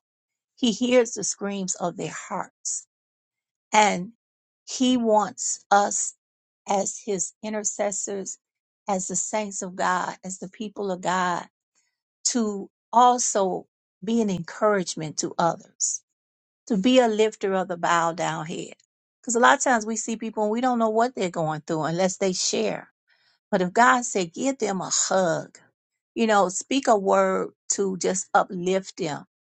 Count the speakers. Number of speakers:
1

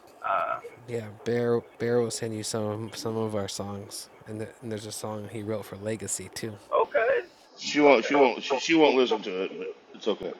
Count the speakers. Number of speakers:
3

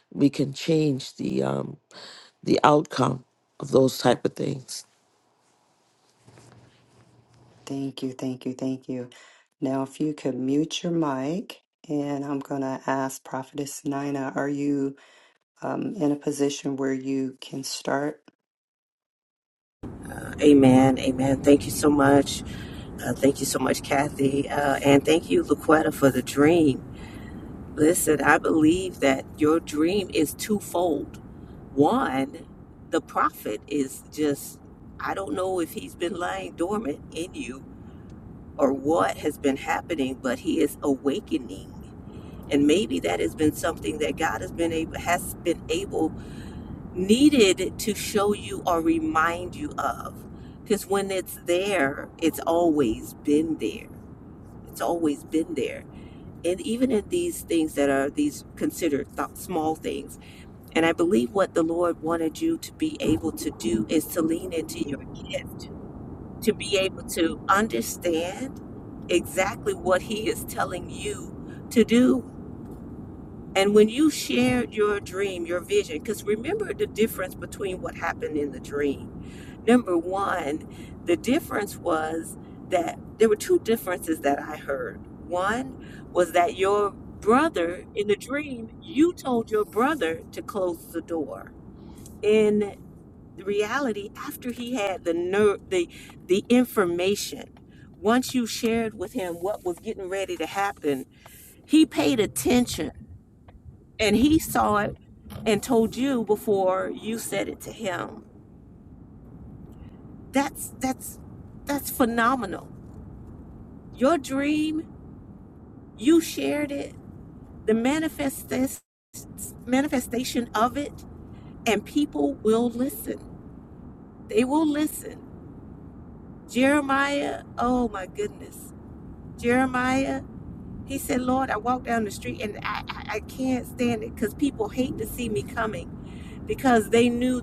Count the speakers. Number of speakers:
3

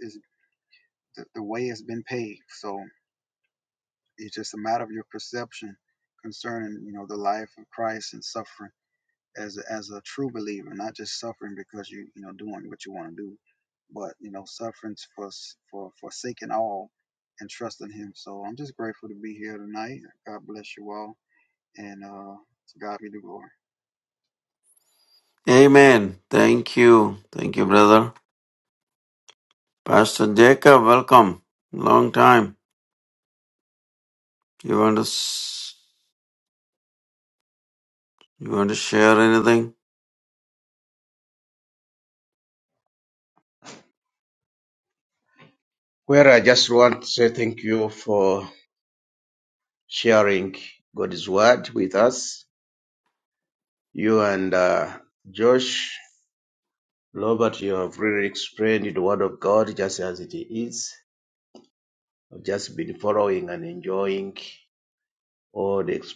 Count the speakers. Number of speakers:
3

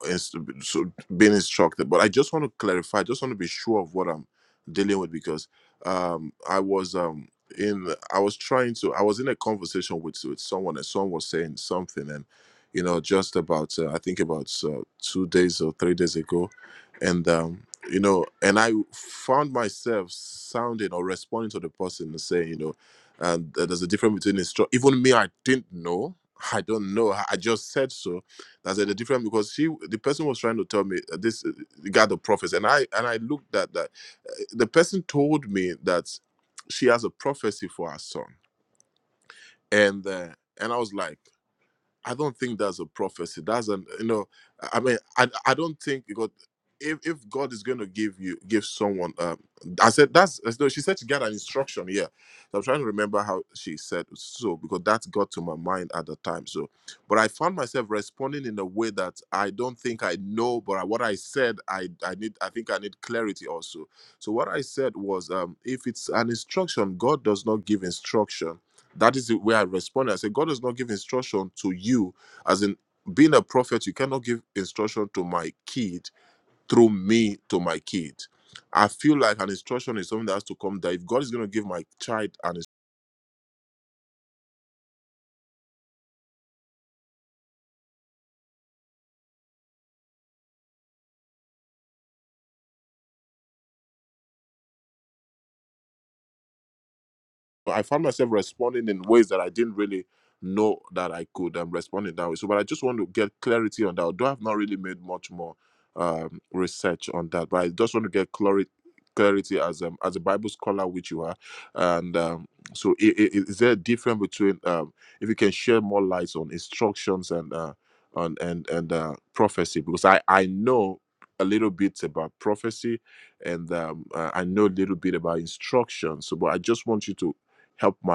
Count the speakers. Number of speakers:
1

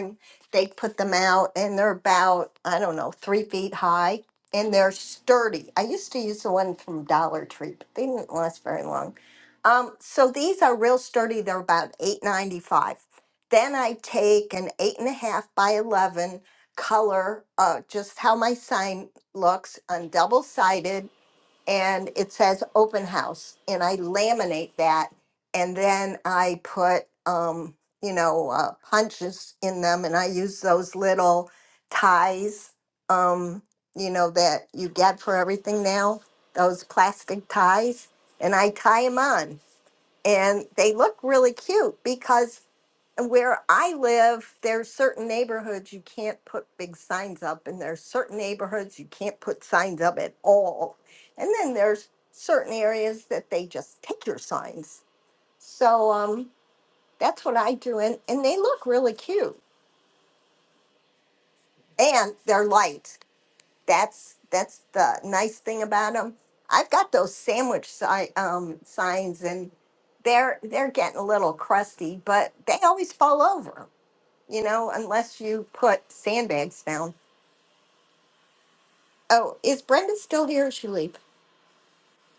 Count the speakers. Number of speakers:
1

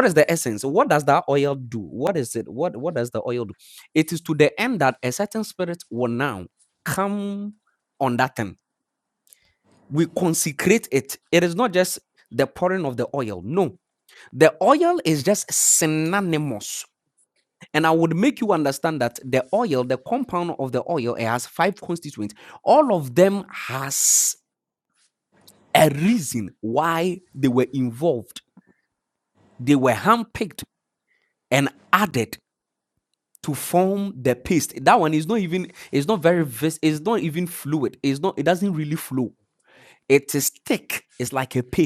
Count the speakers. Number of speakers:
1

